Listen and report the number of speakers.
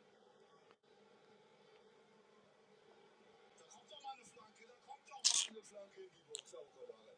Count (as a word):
zero